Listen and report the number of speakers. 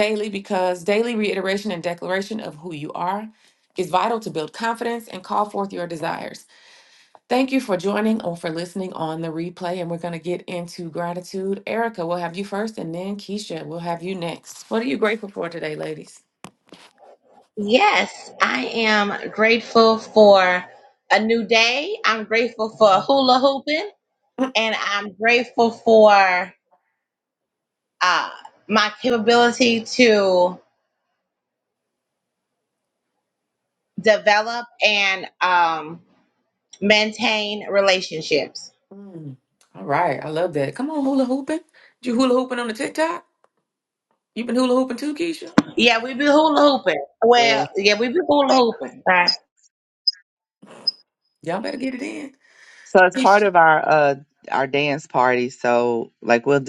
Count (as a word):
three